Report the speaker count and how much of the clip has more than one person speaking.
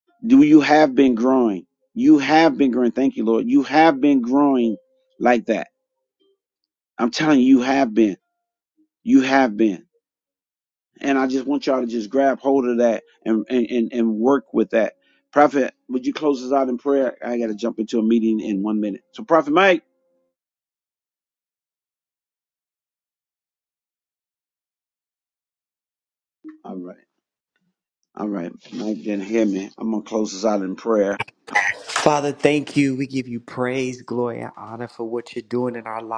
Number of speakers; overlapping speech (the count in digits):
2, no overlap